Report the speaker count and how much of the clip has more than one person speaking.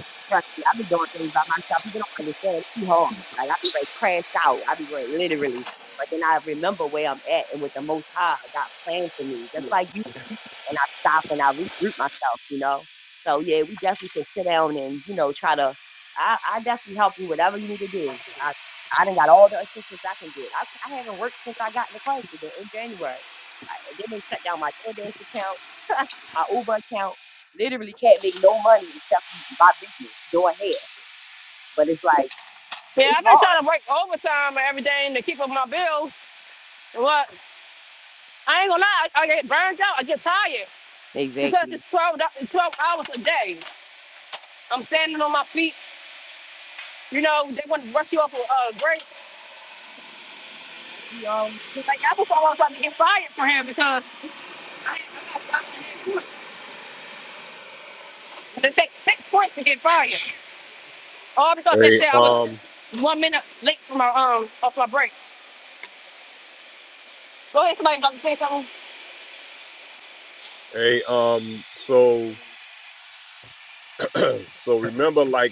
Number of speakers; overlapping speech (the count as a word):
three, about 2%